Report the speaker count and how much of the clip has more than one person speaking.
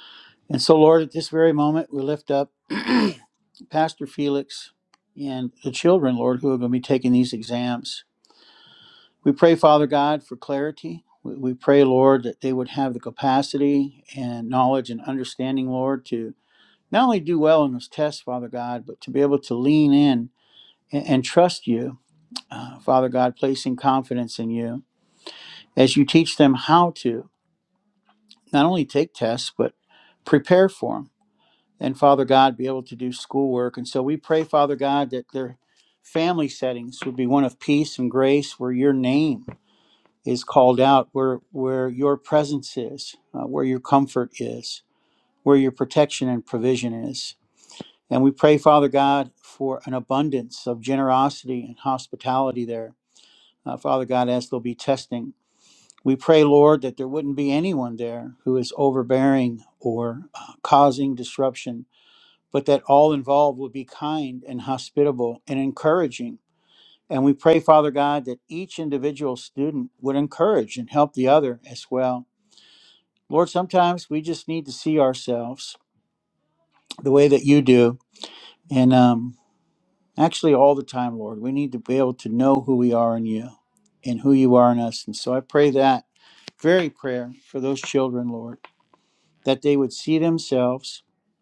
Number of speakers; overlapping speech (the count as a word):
one, no overlap